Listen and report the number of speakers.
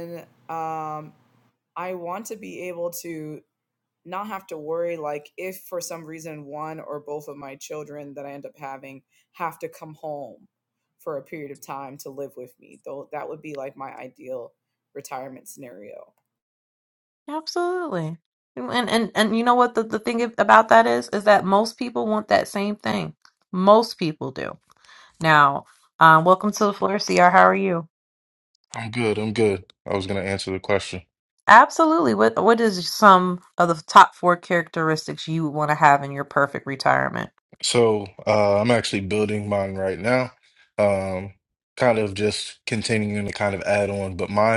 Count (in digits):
3